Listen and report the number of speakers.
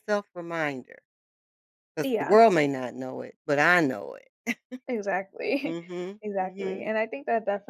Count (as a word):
two